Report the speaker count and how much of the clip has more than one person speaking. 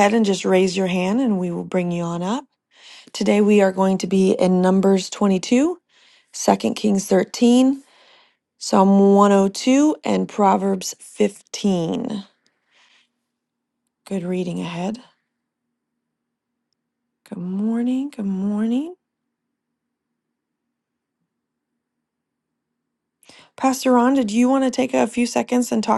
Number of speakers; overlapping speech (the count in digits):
1, no overlap